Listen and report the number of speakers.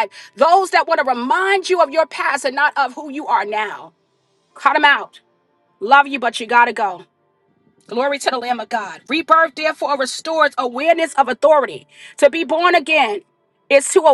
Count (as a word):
one